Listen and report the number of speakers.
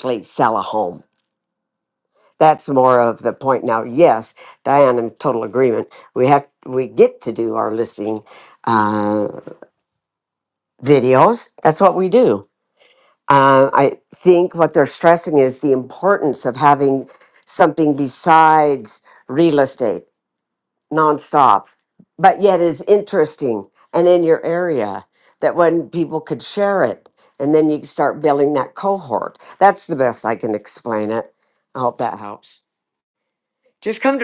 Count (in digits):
1